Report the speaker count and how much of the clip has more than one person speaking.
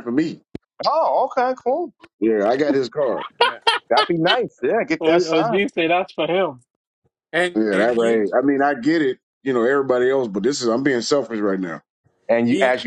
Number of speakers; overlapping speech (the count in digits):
4, about 12%